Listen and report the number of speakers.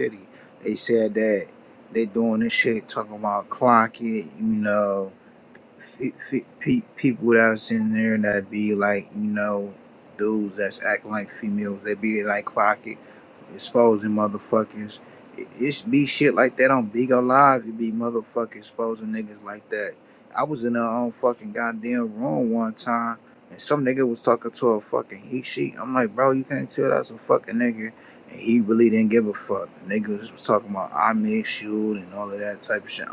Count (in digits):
1